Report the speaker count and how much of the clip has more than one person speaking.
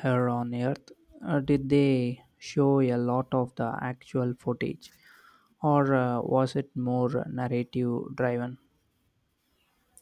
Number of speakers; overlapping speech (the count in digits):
1, no overlap